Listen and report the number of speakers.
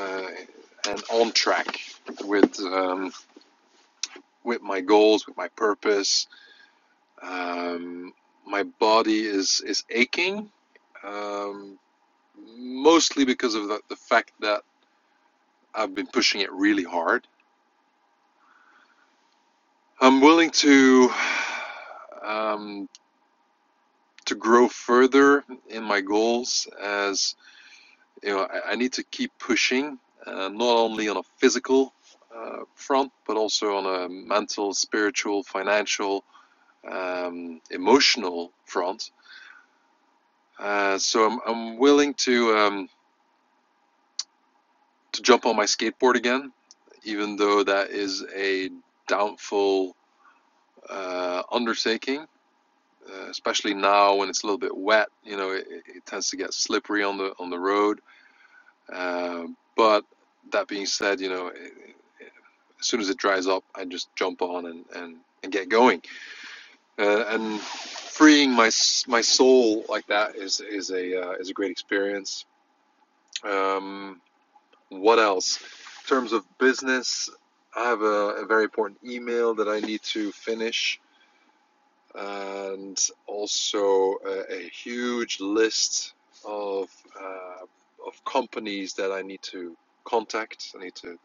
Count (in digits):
1